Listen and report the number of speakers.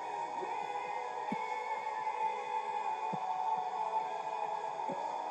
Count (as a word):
zero